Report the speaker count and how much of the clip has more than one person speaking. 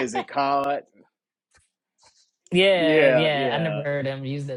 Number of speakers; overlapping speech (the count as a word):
two, about 24%